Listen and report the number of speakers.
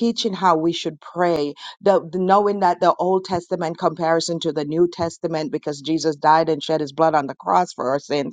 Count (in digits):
1